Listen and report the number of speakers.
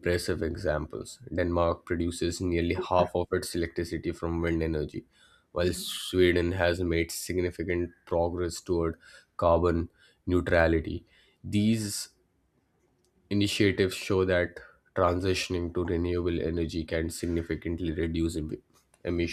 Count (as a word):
one